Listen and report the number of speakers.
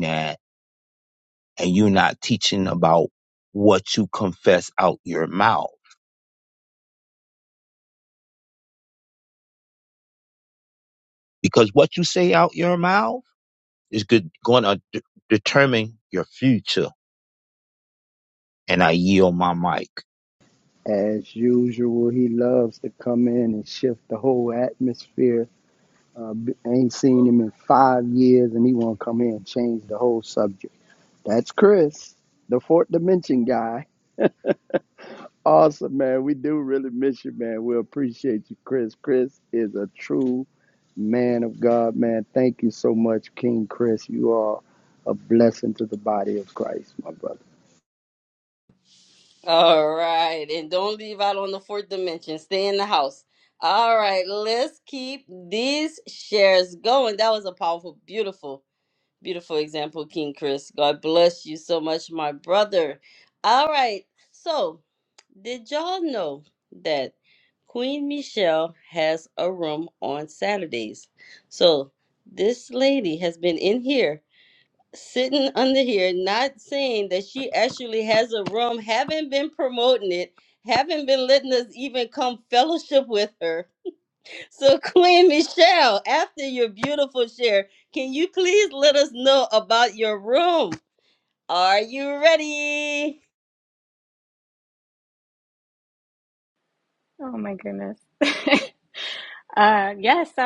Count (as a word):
four